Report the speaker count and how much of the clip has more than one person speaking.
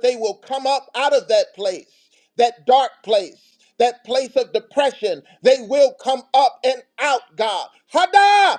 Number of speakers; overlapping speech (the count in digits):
1, no overlap